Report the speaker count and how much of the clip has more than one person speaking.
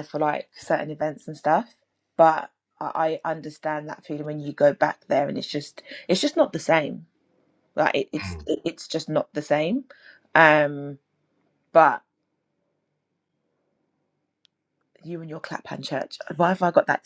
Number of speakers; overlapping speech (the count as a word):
one, no overlap